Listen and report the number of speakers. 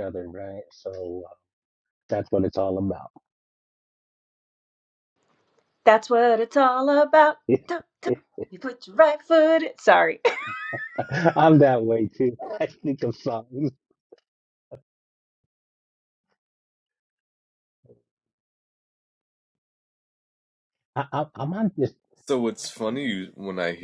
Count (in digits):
3